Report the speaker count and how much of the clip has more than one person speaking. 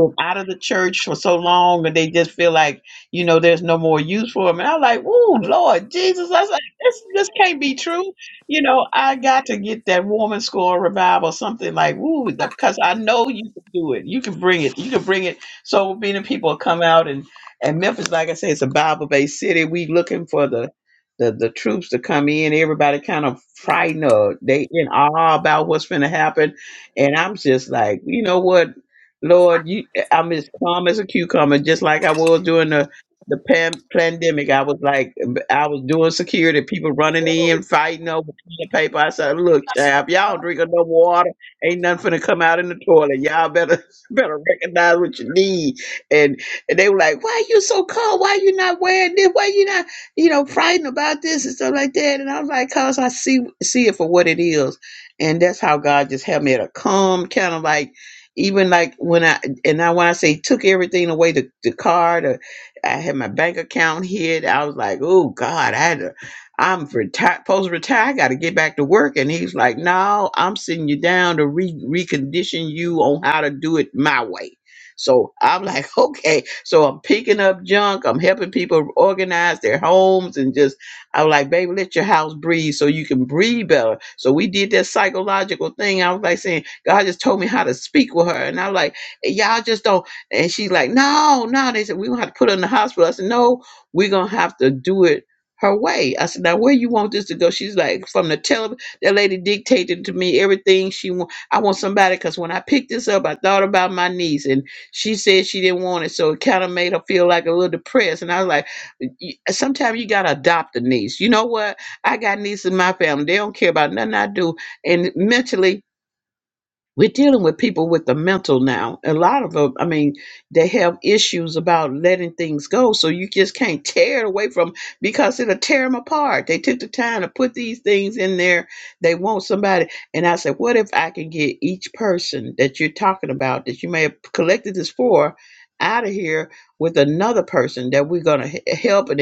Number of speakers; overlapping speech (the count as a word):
one, no overlap